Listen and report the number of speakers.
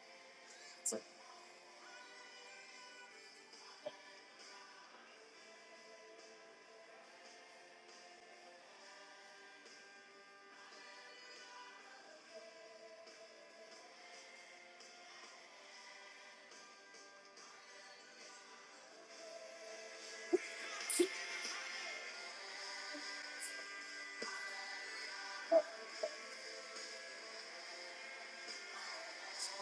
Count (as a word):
zero